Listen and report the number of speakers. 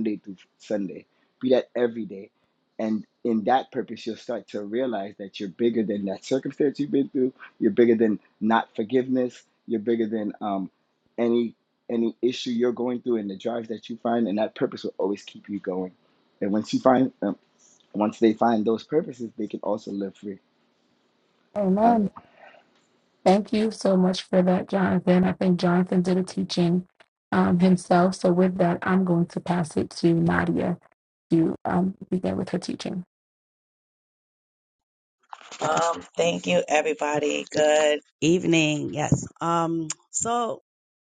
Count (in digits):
3